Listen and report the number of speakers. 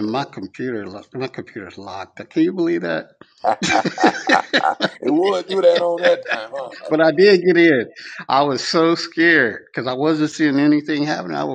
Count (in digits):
2